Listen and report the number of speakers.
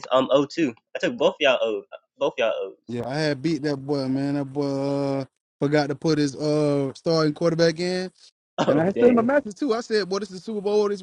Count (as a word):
two